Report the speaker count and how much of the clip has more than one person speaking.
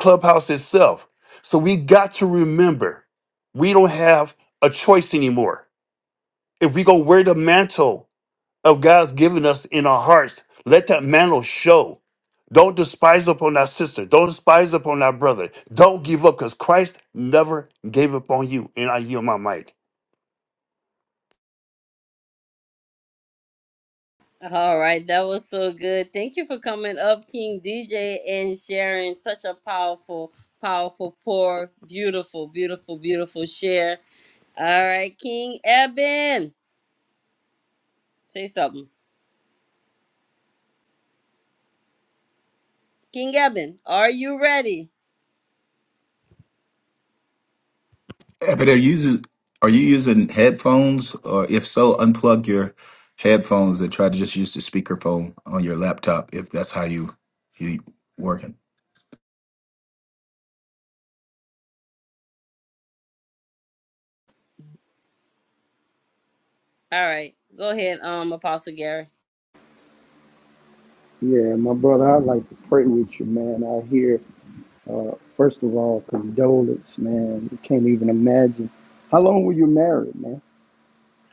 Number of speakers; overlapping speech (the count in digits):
4, no overlap